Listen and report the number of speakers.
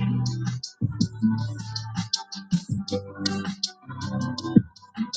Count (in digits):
0